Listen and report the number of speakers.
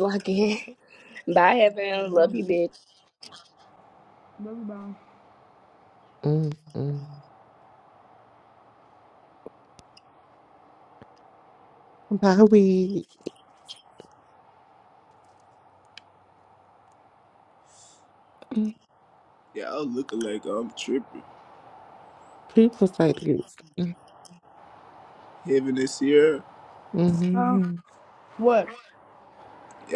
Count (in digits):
4